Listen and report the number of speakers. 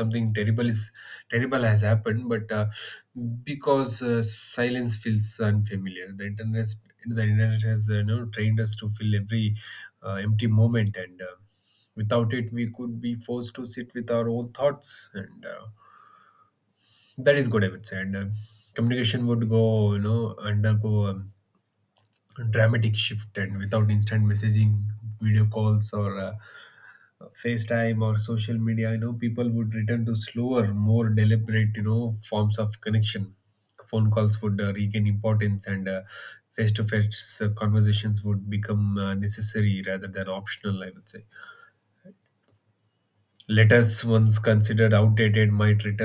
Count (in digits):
1